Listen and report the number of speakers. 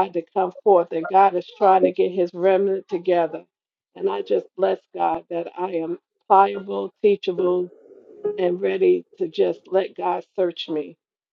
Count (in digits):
1